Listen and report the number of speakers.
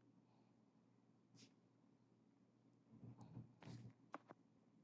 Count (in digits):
0